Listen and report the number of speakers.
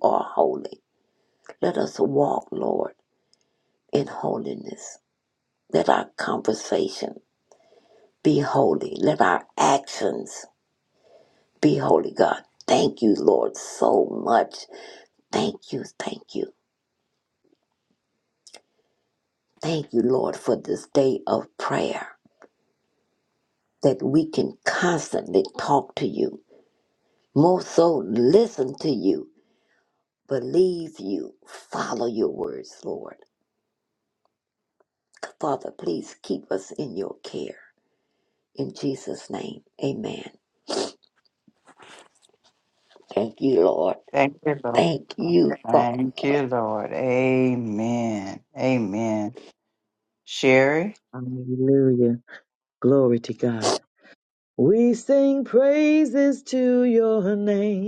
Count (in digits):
3